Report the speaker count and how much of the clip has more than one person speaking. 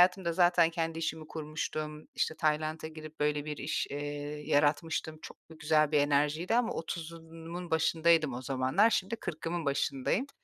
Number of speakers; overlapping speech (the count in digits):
1, no overlap